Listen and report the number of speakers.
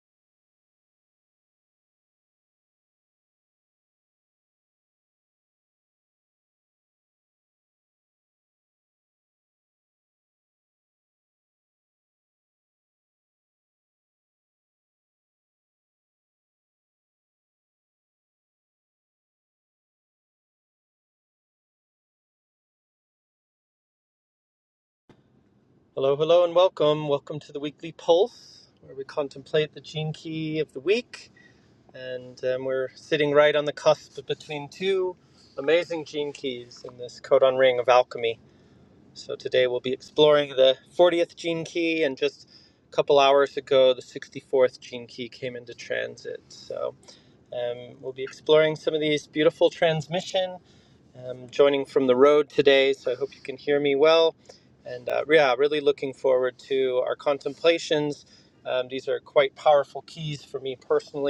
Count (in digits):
1